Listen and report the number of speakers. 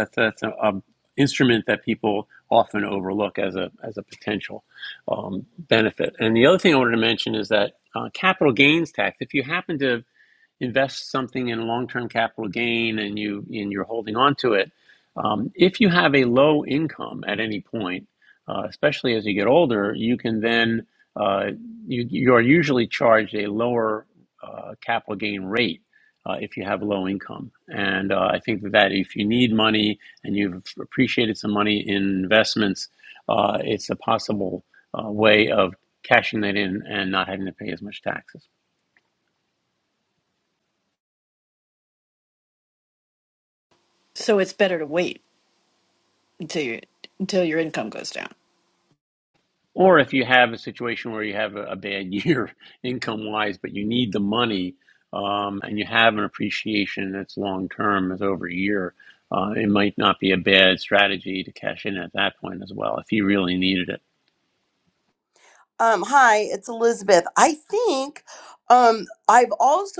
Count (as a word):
three